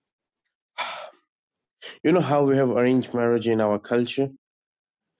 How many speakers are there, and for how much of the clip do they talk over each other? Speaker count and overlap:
1, no overlap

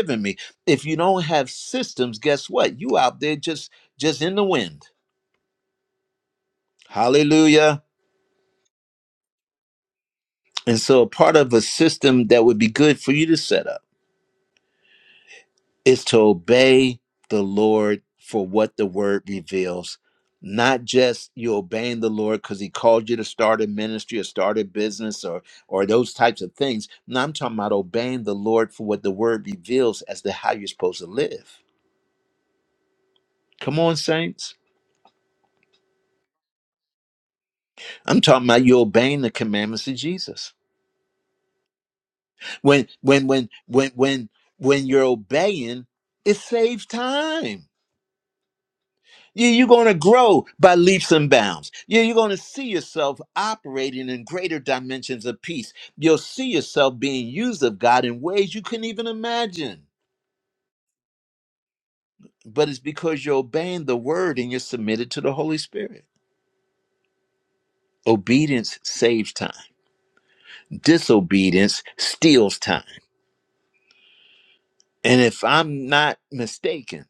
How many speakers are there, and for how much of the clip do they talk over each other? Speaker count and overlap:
1, no overlap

